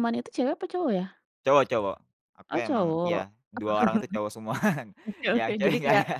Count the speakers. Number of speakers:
2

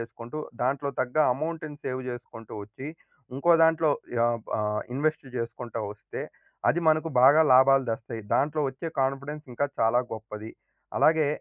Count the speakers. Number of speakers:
1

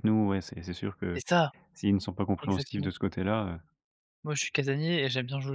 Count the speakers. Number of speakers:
2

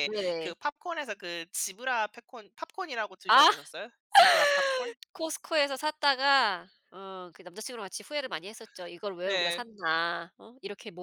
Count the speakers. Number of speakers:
2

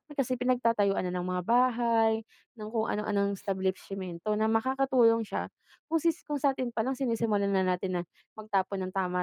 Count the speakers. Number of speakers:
1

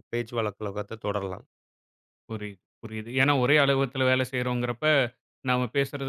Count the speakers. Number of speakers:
2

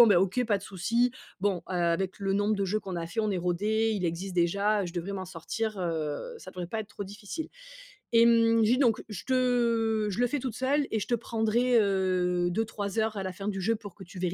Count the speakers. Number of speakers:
1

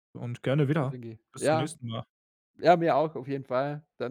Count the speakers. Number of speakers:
2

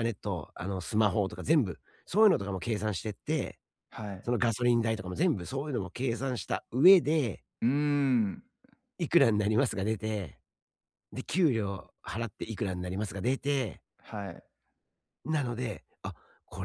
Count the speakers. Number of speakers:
2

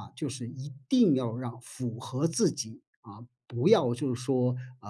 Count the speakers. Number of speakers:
1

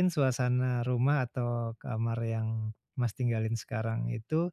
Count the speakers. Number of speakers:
1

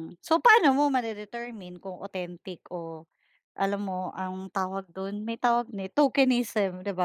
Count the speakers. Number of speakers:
1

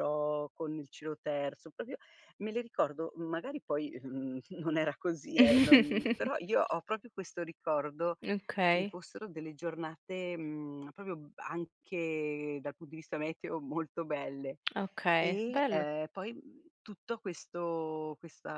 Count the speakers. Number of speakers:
2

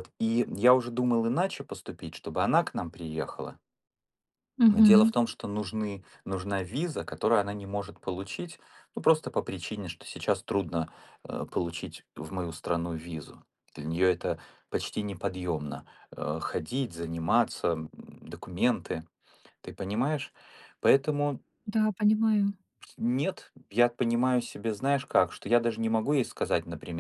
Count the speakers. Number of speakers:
2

